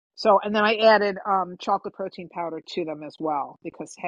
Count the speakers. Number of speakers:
one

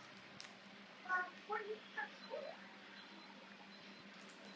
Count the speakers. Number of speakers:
zero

